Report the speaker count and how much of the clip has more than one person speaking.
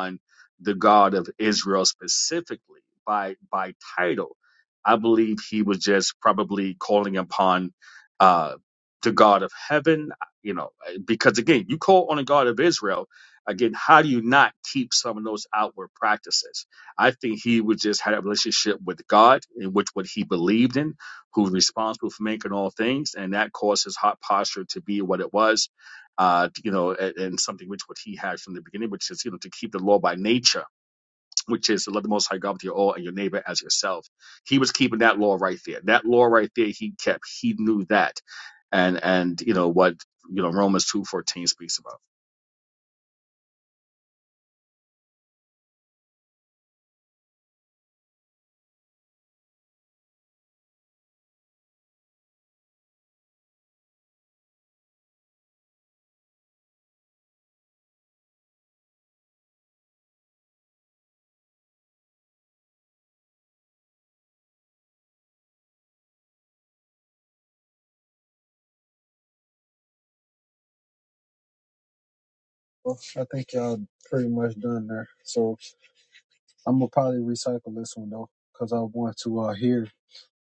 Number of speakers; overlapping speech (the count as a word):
two, no overlap